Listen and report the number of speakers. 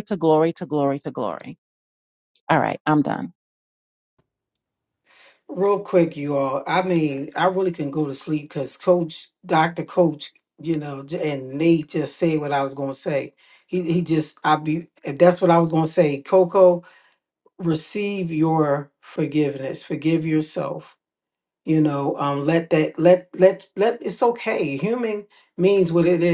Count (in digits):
2